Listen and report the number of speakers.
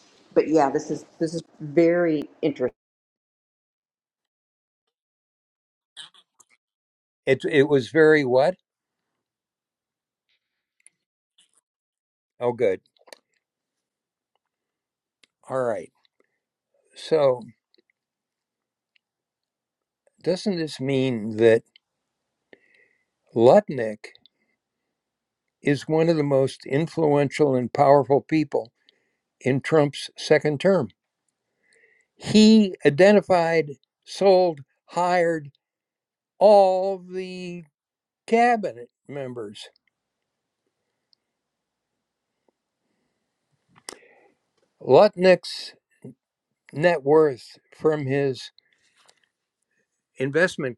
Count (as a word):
two